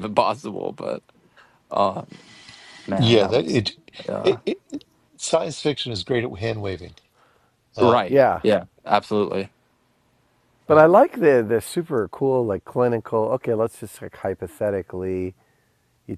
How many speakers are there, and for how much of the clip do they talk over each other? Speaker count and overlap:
three, about 9%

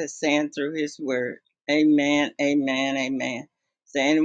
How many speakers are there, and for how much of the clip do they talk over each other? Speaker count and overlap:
one, no overlap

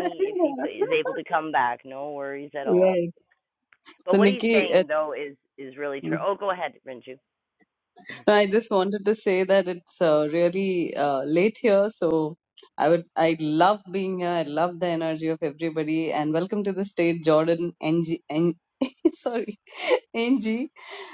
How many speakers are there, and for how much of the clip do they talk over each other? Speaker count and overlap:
two, about 6%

